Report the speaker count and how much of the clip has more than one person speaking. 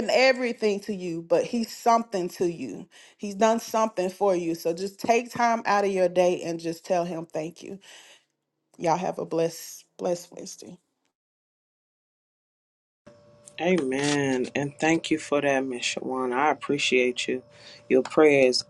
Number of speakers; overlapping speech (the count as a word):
two, no overlap